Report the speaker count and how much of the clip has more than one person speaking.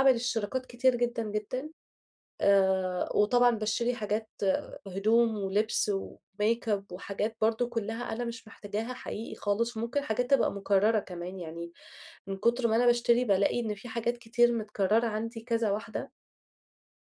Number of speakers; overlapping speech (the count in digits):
1, no overlap